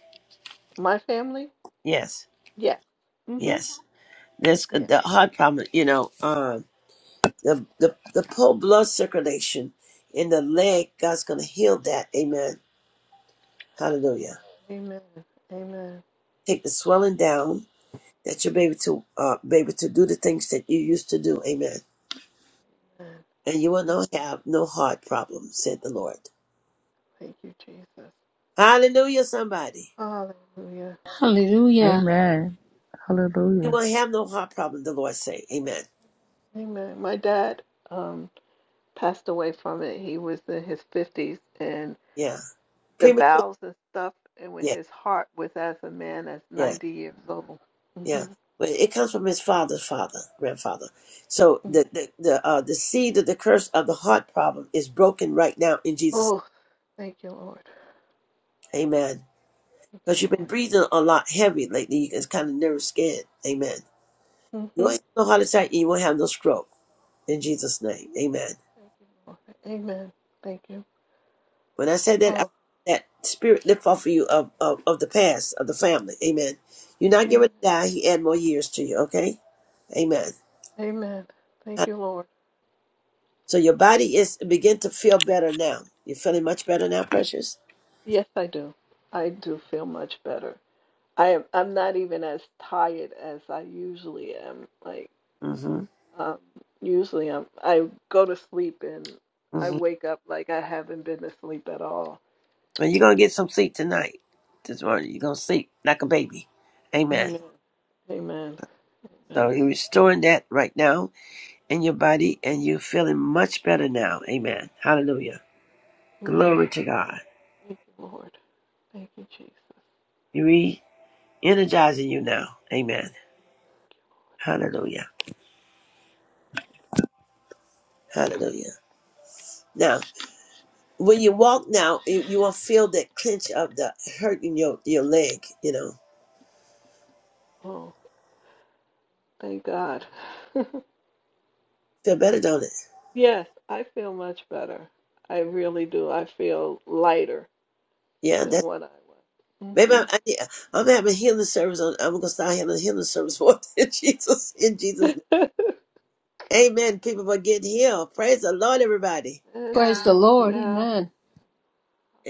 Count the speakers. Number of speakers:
four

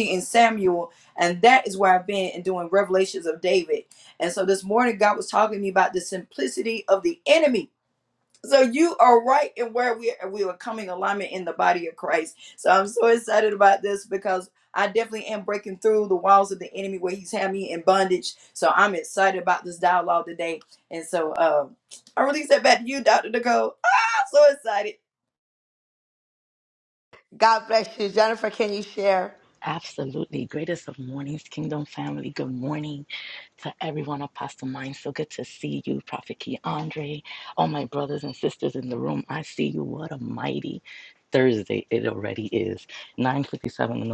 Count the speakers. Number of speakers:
three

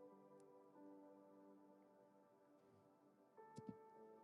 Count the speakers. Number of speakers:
zero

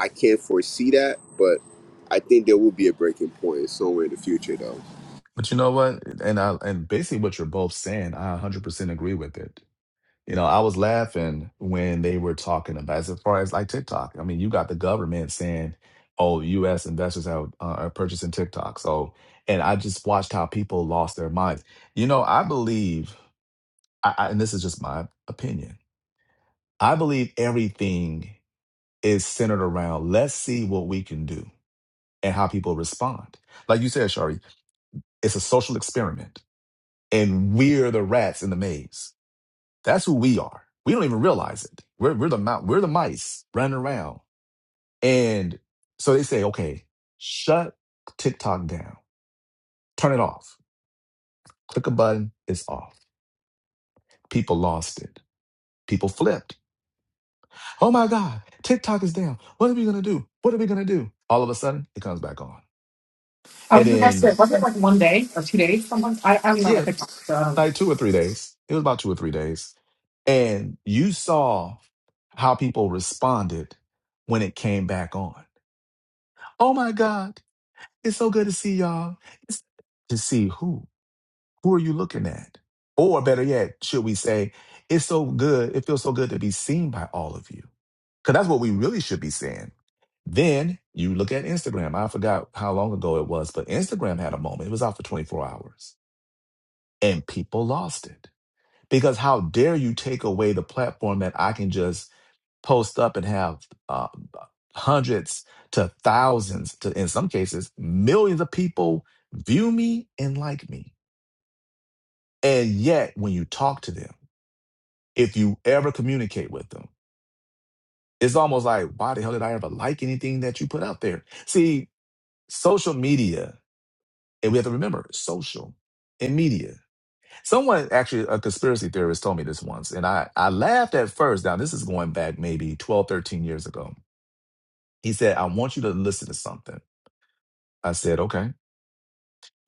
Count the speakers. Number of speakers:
three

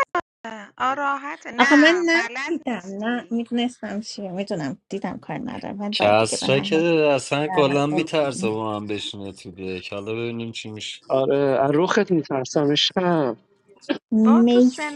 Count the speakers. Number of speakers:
four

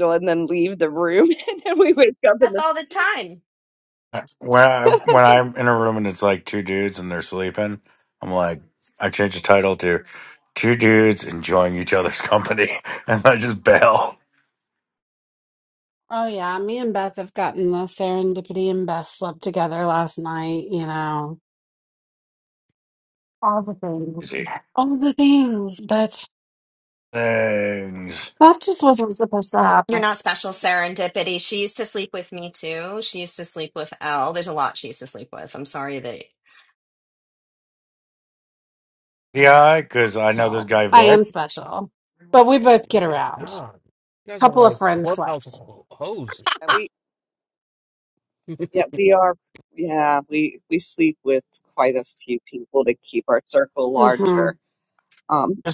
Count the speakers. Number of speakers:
five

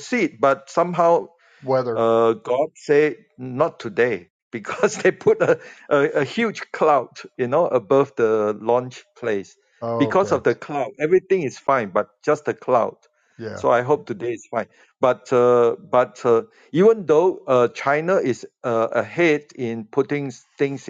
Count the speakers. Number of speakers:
two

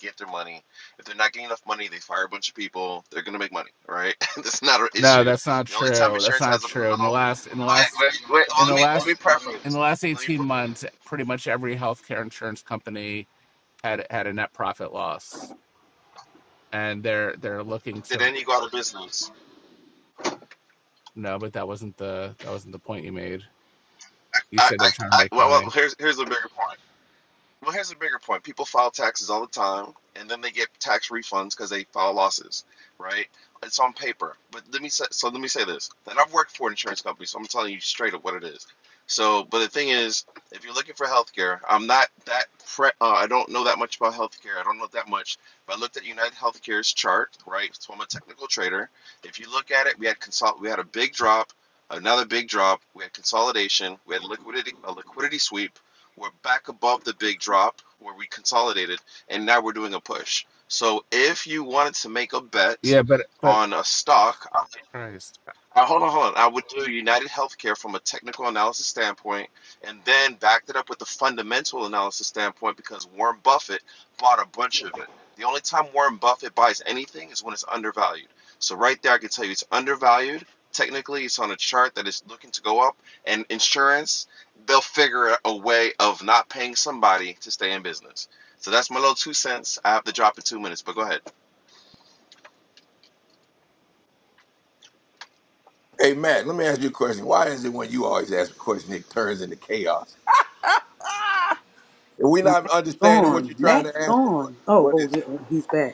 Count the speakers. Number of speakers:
four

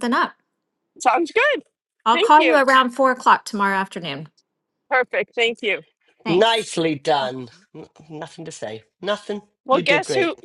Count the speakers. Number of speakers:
three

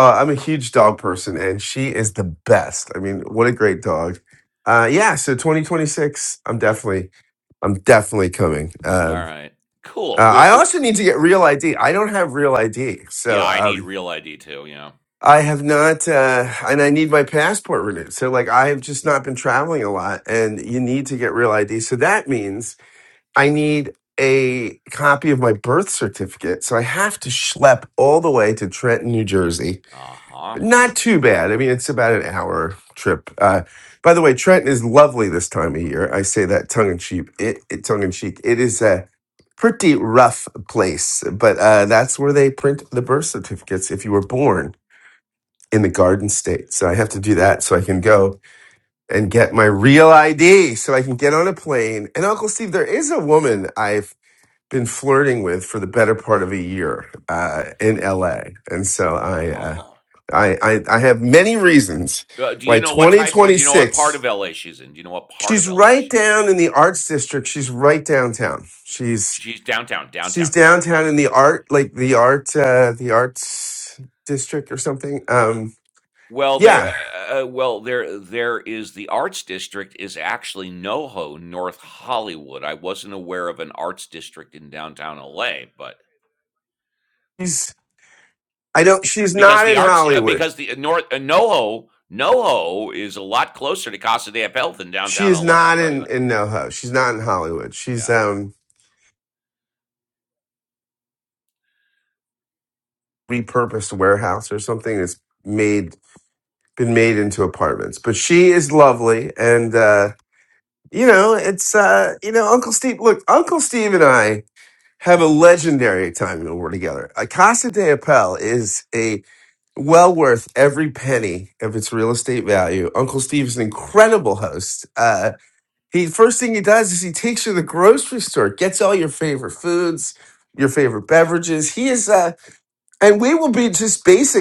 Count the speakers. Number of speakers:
two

